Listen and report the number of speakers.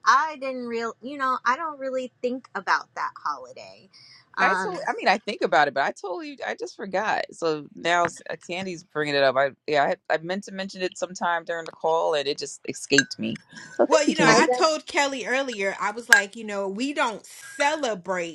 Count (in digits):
3